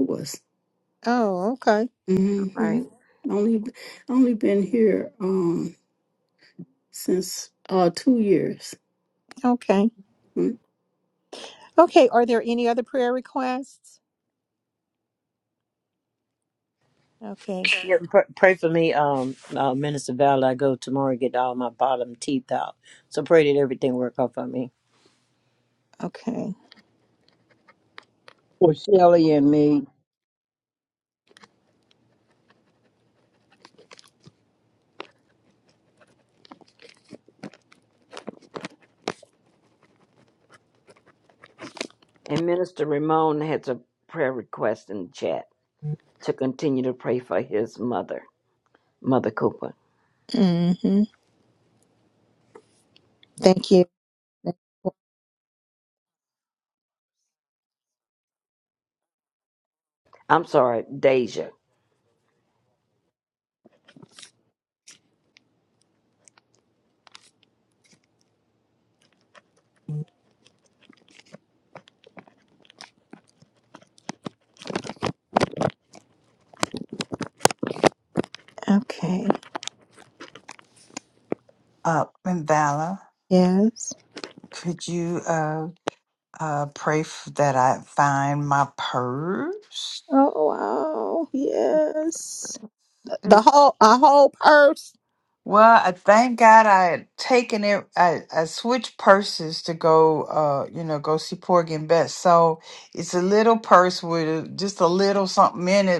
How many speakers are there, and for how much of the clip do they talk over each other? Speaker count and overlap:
6, under 1%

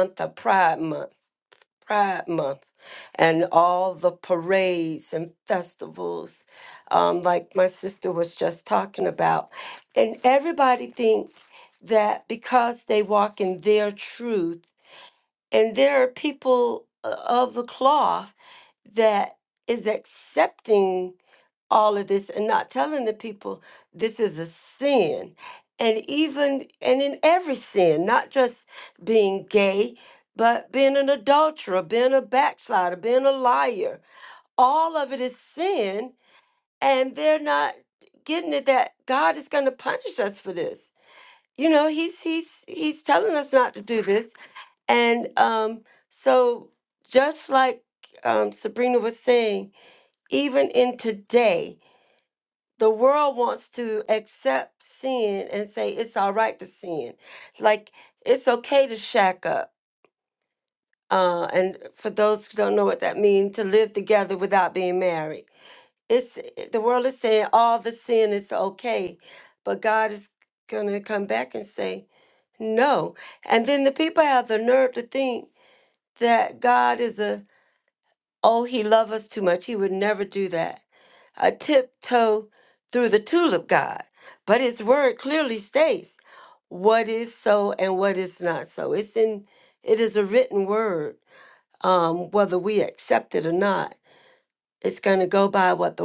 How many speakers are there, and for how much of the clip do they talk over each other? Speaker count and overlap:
1, no overlap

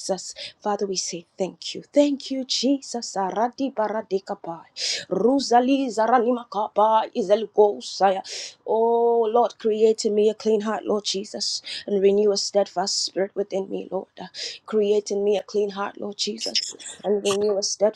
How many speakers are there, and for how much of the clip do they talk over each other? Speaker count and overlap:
1, no overlap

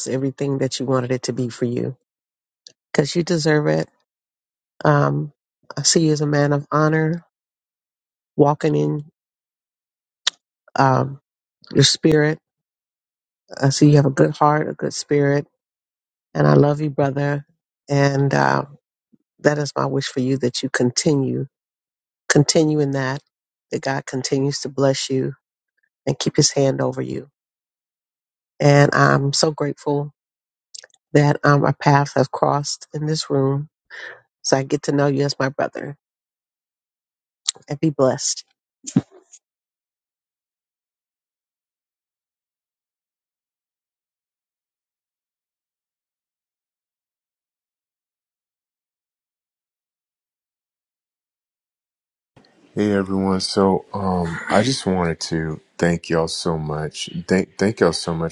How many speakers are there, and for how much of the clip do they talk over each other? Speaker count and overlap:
2, no overlap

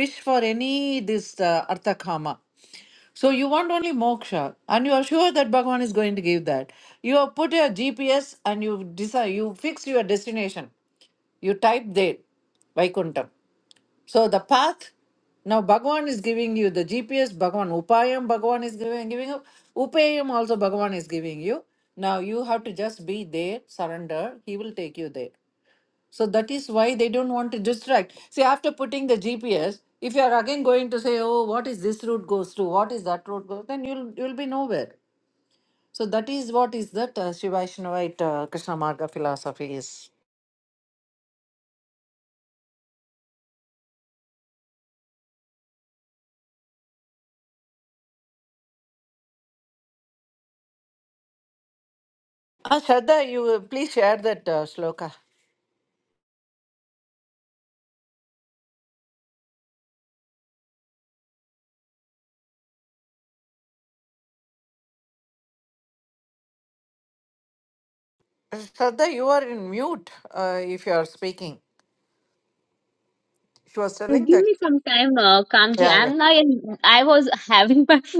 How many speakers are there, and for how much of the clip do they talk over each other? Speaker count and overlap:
2, about 1%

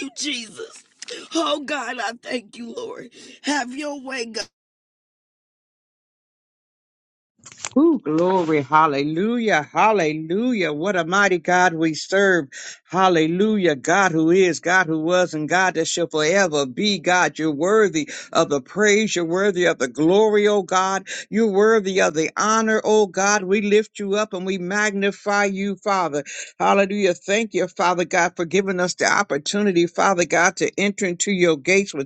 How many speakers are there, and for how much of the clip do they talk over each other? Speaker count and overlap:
2, no overlap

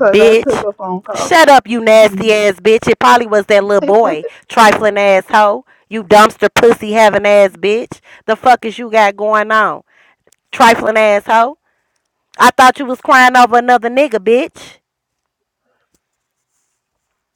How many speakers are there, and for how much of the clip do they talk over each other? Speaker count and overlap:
2, about 7%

